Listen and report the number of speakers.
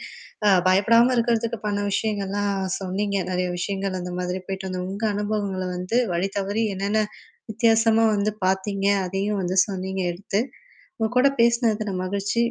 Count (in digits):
1